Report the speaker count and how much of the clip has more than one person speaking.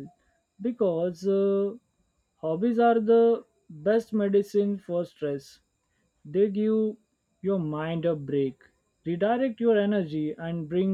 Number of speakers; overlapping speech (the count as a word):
one, no overlap